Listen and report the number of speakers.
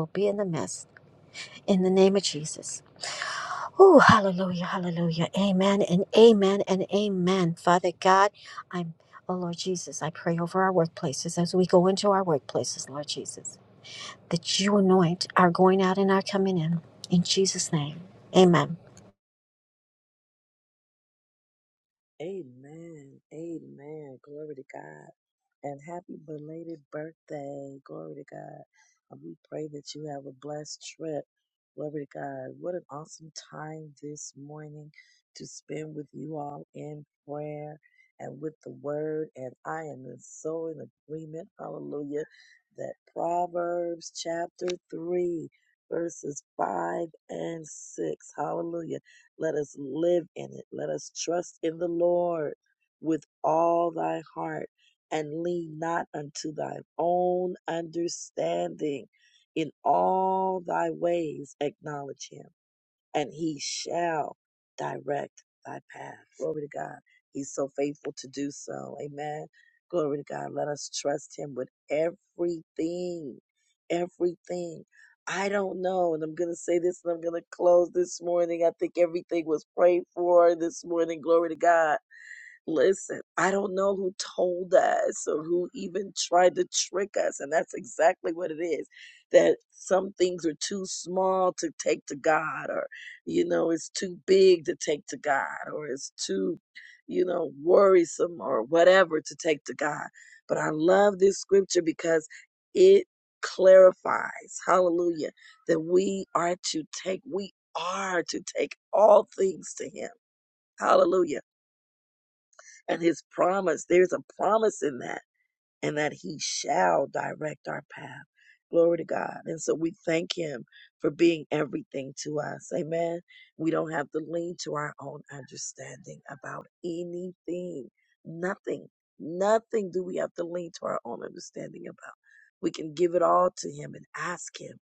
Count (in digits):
2